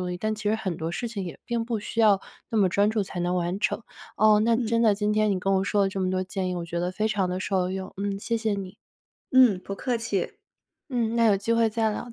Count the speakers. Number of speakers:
two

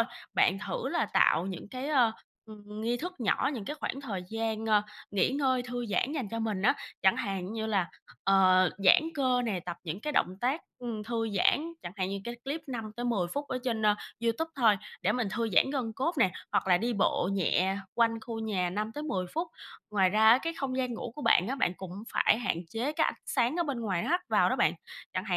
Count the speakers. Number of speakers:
one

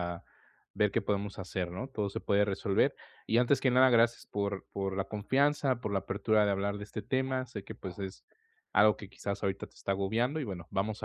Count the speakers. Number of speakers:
one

